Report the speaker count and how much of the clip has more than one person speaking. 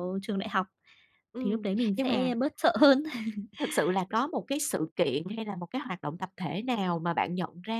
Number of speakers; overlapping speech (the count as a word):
two, about 7%